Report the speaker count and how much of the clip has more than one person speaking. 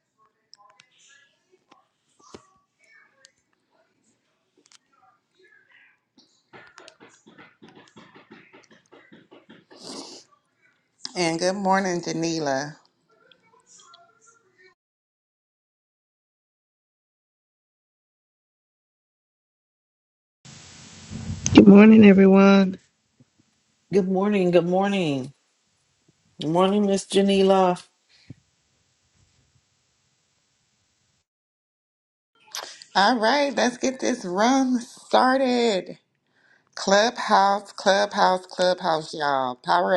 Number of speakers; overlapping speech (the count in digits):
3, no overlap